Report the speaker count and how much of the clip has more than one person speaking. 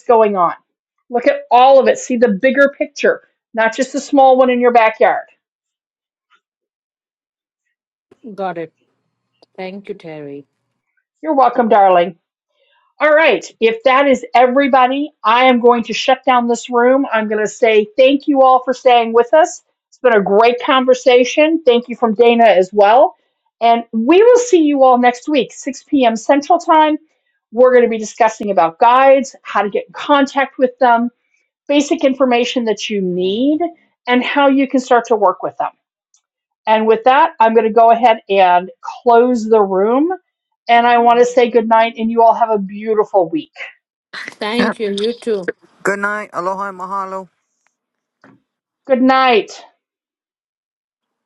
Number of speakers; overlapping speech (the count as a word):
three, no overlap